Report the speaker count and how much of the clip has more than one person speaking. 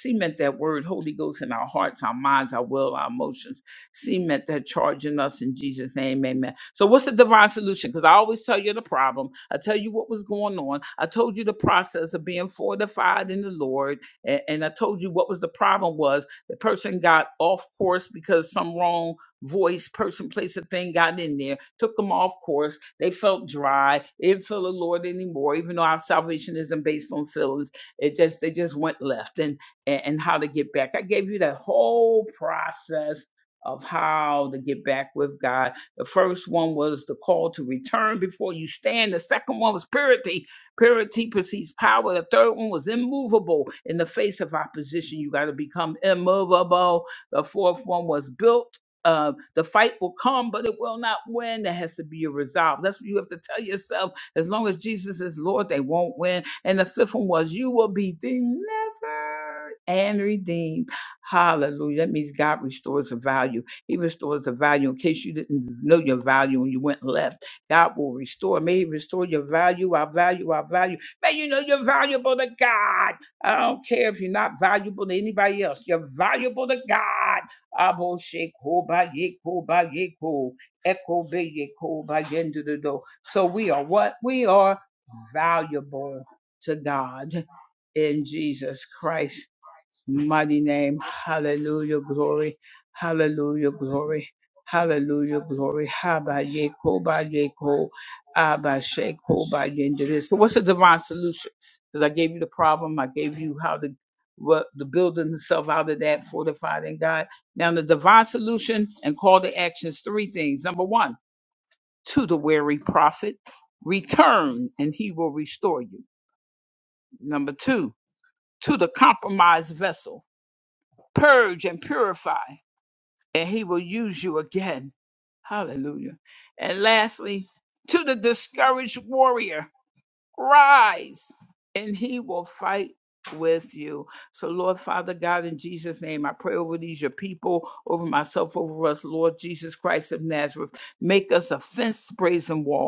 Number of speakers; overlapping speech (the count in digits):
1, no overlap